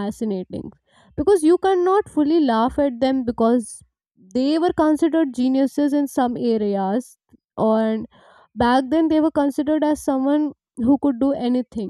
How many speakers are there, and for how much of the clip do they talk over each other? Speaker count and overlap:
1, no overlap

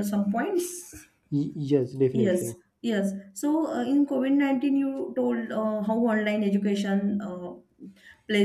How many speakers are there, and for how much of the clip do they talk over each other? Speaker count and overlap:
2, about 5%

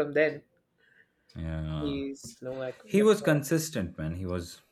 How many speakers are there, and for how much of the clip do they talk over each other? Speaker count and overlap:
2, about 12%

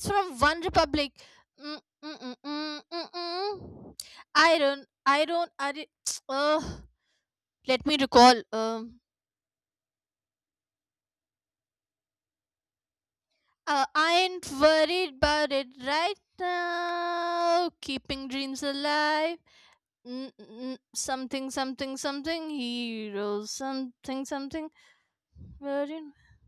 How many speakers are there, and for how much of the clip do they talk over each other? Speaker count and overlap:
1, no overlap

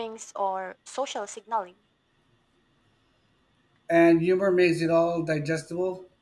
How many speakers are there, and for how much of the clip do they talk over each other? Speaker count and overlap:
2, no overlap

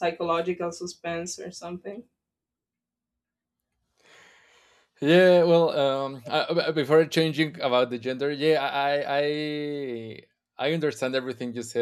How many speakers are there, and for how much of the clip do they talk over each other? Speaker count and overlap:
2, no overlap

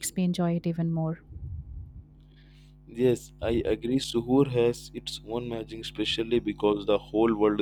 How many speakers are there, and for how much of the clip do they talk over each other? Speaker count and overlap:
2, no overlap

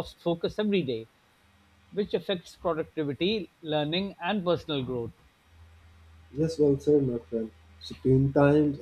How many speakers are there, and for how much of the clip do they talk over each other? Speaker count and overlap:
2, no overlap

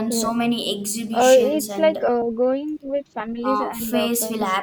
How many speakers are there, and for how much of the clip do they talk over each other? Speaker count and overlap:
2, about 55%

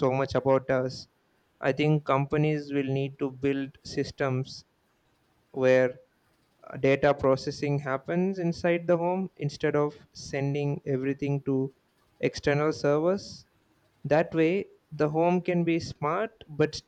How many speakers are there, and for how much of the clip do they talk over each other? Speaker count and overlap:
1, no overlap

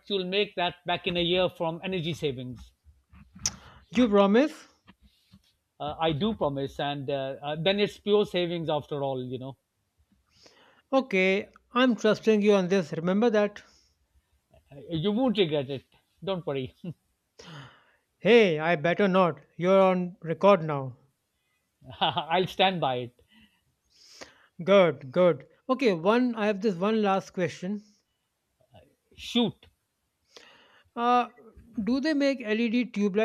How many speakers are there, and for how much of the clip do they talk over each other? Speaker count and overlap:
2, no overlap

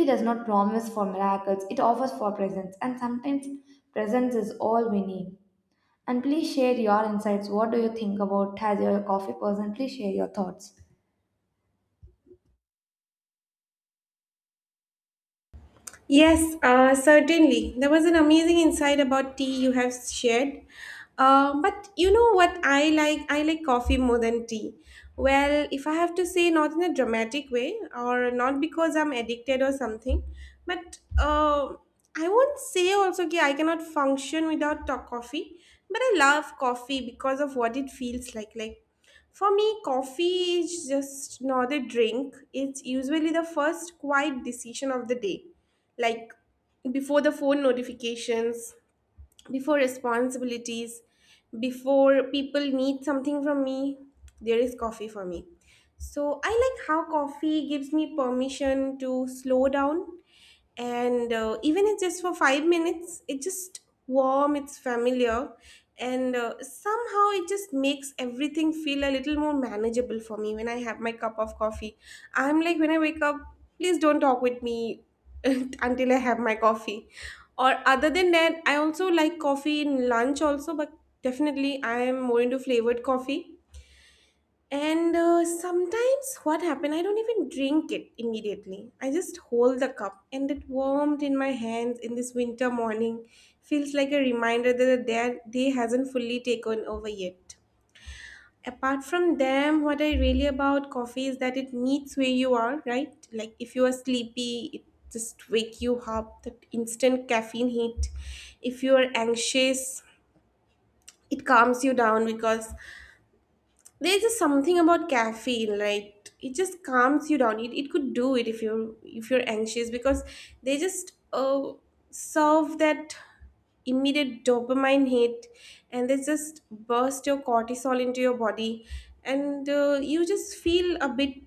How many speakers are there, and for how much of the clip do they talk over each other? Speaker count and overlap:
2, no overlap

